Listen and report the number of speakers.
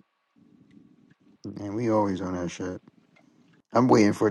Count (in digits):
1